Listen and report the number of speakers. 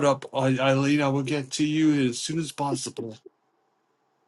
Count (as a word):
one